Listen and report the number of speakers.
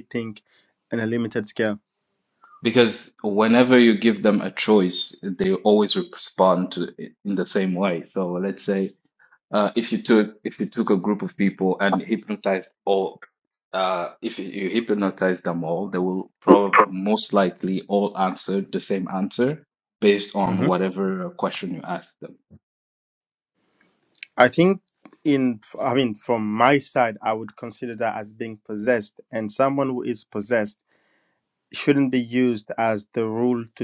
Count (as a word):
two